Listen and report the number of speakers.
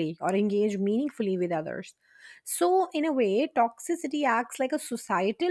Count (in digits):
1